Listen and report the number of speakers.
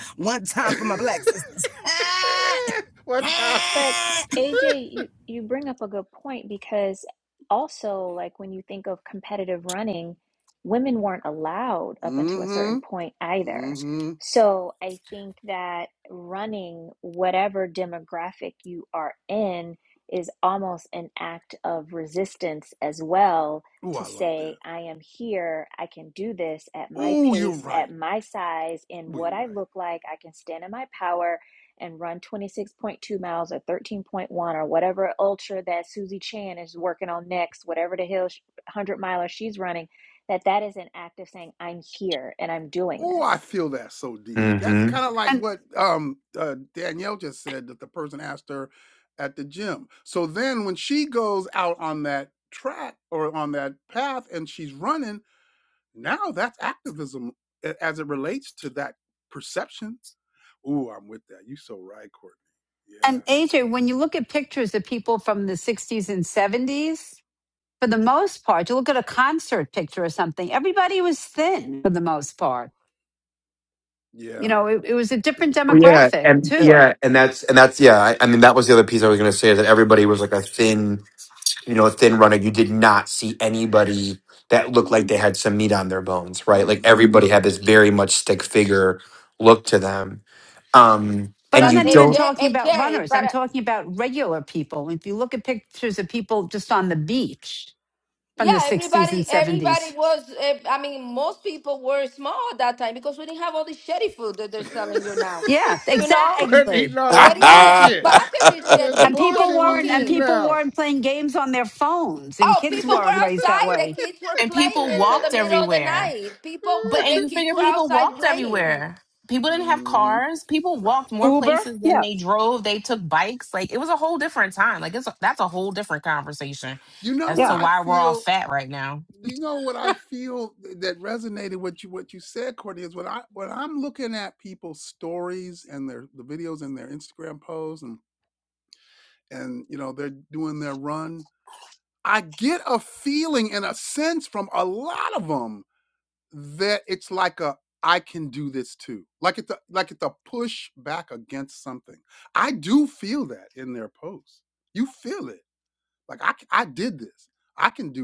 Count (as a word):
seven